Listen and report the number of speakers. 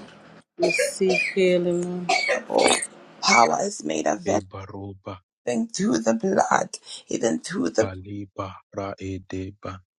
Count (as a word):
three